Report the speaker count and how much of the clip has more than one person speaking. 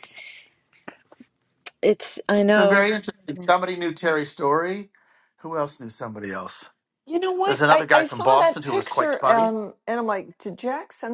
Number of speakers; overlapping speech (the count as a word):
three, about 24%